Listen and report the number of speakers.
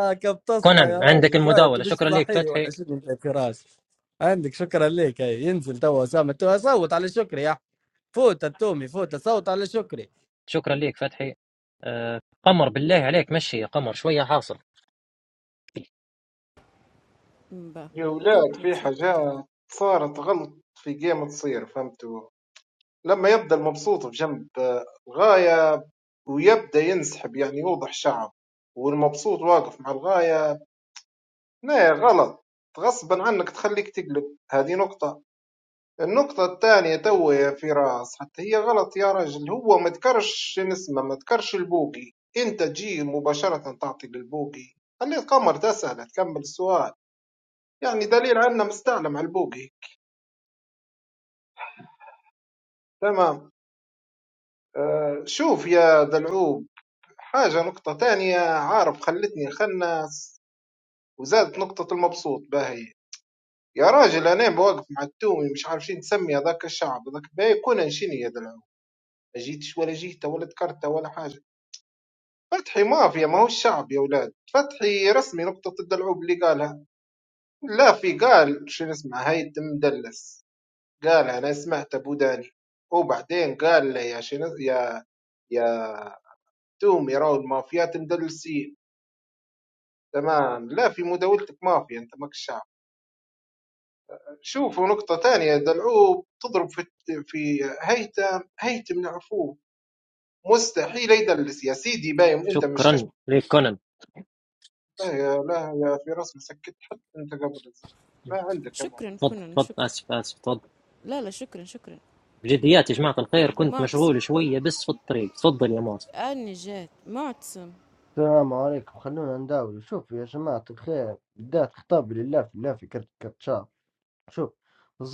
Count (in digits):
5